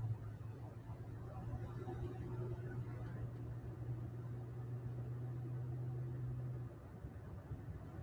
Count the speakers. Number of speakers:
0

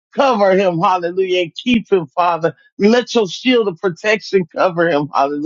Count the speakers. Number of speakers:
1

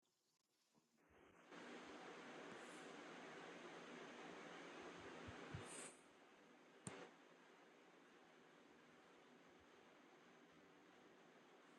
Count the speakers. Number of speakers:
0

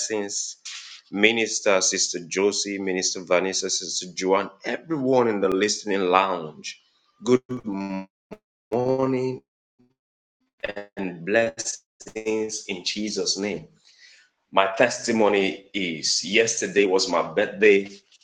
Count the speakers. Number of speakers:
1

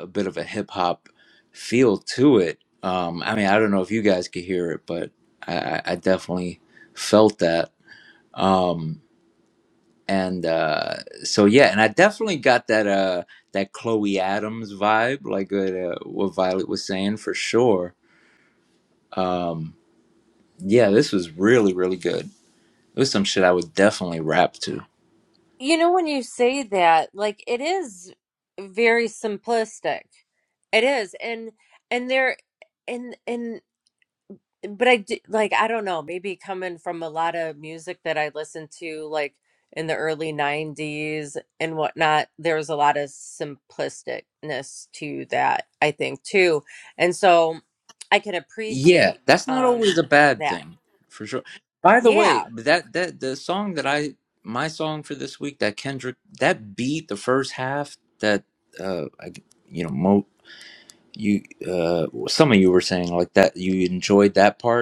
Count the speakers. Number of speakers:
2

